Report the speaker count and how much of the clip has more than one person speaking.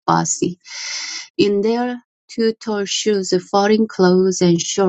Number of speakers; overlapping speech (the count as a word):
one, no overlap